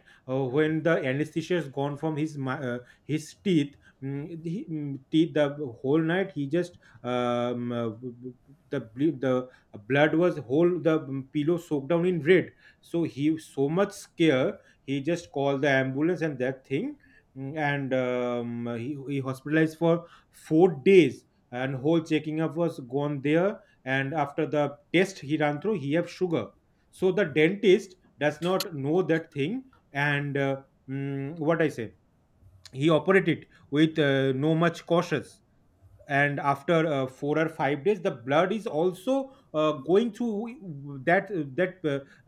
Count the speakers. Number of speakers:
1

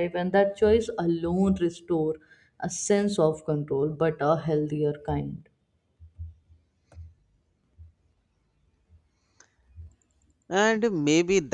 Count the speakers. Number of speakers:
2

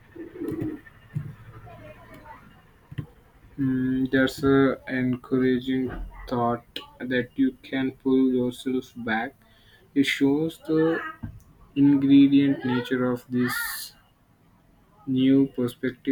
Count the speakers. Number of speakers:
1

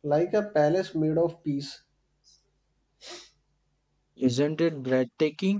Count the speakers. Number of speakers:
2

